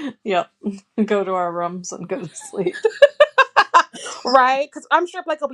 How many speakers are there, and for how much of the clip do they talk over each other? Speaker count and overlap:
2, no overlap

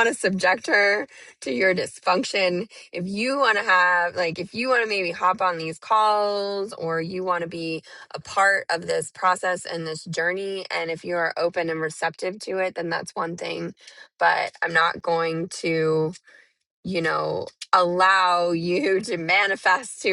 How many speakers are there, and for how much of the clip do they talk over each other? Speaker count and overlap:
1, no overlap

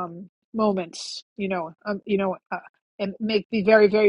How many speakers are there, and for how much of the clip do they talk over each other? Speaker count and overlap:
1, no overlap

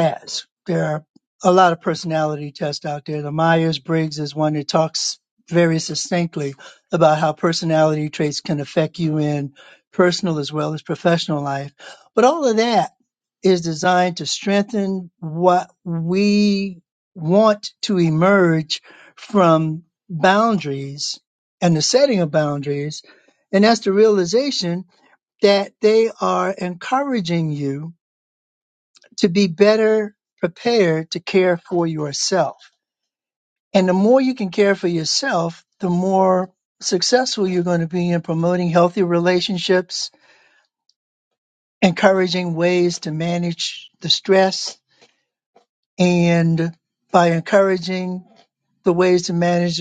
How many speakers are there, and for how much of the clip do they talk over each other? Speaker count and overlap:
1, no overlap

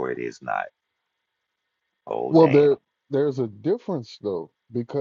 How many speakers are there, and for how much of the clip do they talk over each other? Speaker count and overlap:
2, about 9%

